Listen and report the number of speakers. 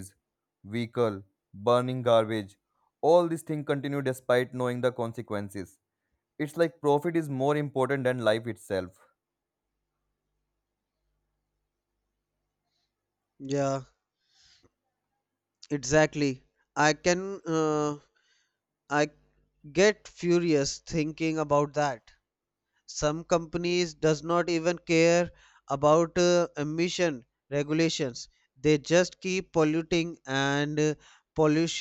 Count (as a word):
two